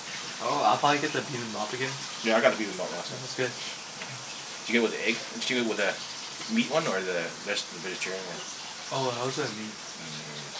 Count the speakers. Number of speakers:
2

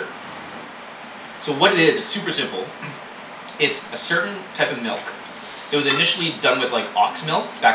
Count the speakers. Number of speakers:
1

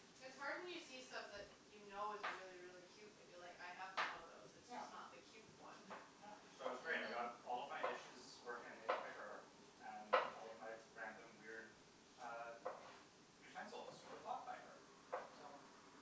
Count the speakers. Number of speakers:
2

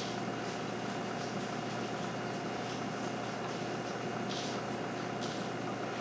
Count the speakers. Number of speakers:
0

